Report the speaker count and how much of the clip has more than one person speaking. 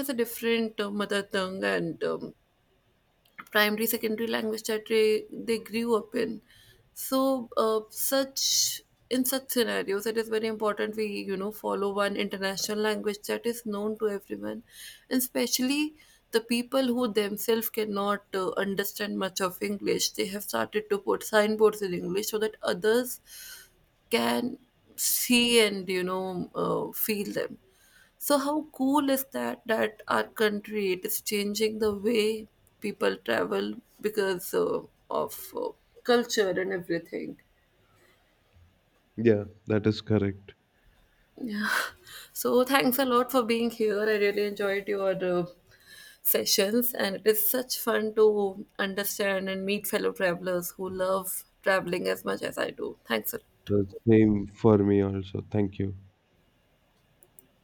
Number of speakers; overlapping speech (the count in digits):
2, under 1%